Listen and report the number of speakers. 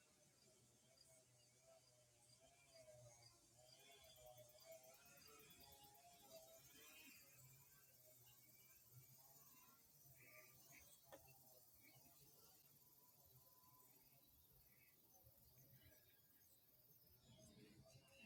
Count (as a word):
zero